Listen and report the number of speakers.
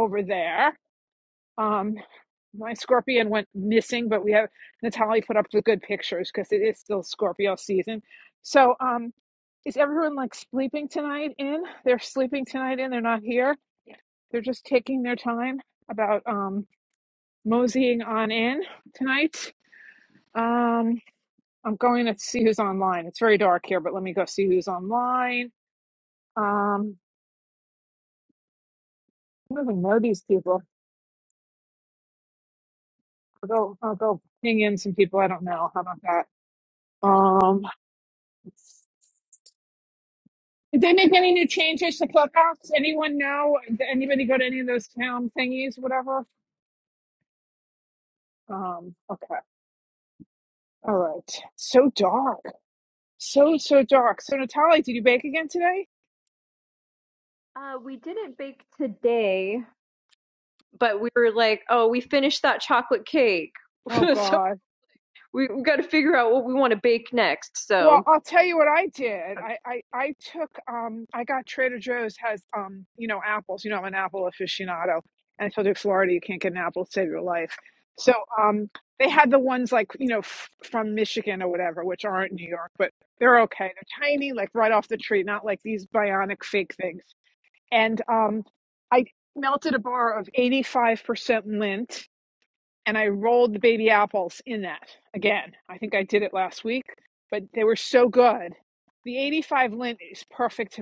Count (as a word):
two